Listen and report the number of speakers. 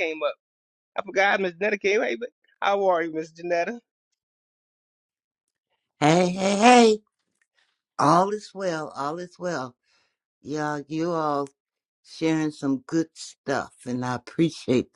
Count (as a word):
two